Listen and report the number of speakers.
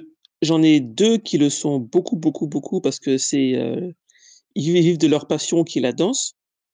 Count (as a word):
one